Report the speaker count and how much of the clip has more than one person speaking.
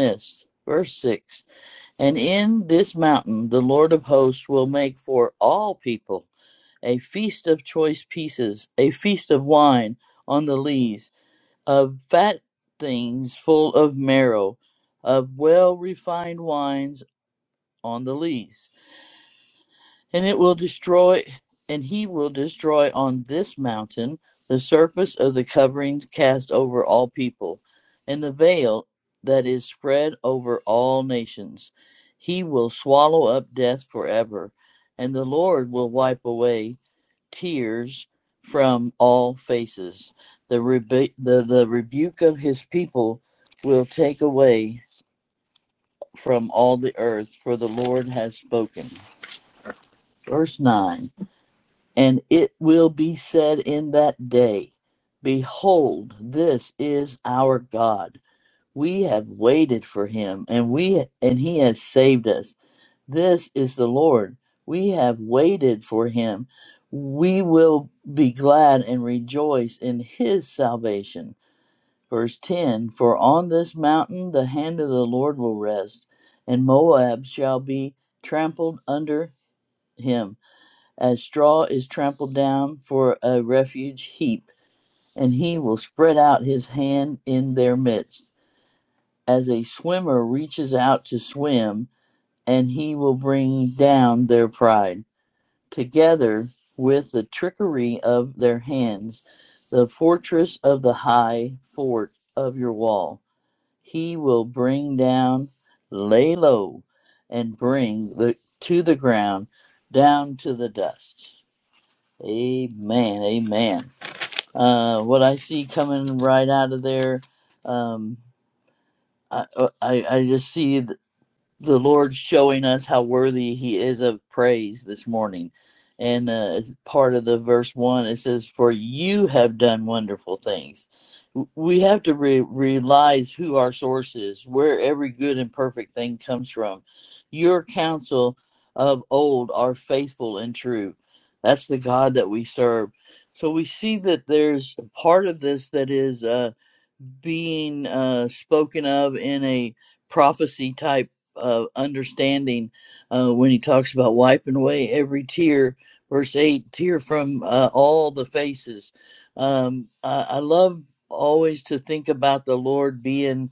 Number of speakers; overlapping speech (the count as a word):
one, no overlap